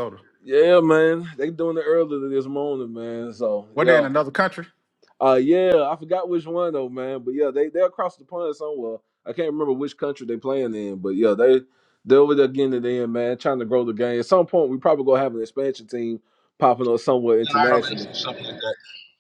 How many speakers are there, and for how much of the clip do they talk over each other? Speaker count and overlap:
three, about 5%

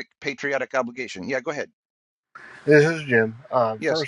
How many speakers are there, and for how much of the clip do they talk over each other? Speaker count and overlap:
two, about 5%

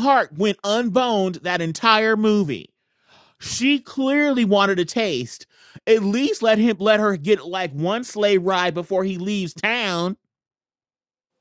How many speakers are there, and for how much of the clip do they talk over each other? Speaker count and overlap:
one, no overlap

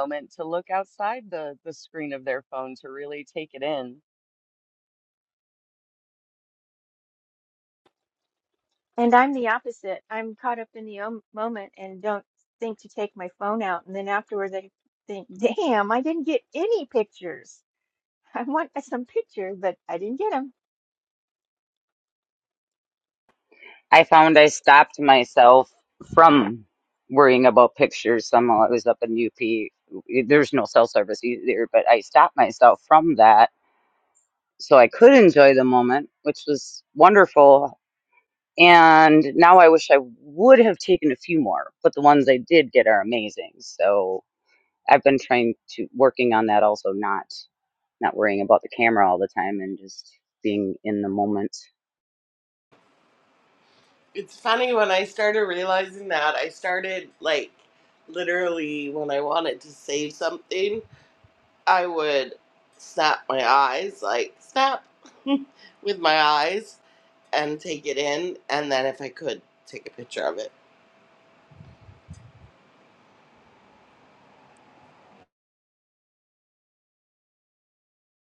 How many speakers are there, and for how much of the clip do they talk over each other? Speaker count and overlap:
four, no overlap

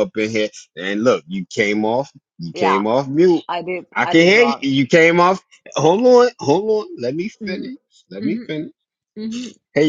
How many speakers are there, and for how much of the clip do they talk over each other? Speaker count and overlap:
two, about 14%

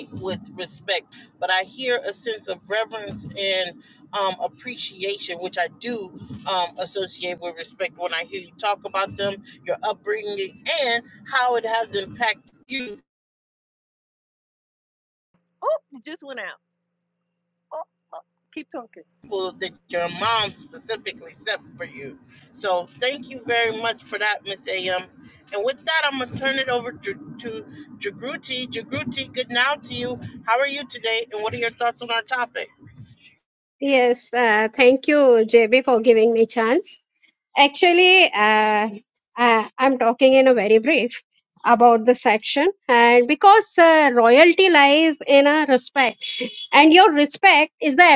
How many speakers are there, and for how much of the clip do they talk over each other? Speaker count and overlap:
three, no overlap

